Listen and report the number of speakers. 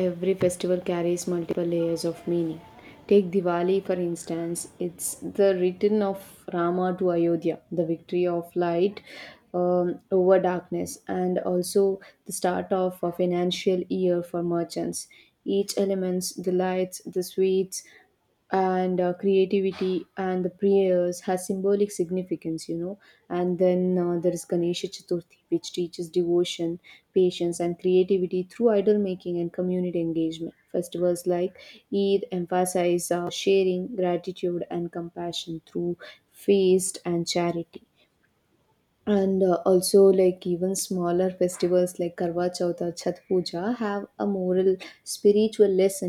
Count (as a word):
one